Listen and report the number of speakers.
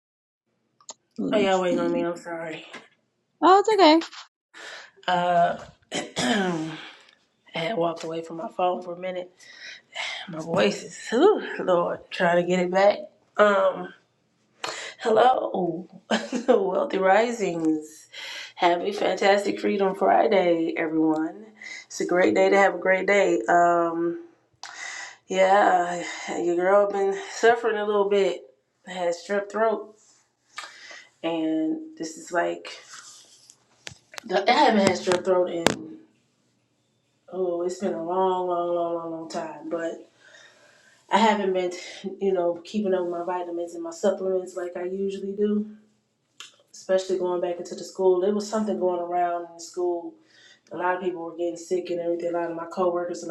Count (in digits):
2